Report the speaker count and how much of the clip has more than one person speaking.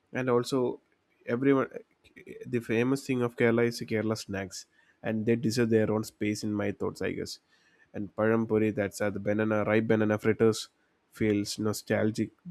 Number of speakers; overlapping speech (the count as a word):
one, no overlap